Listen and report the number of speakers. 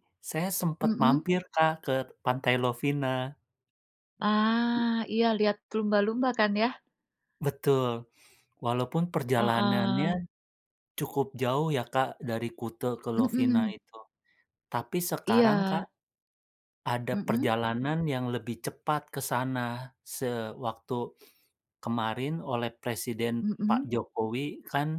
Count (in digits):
2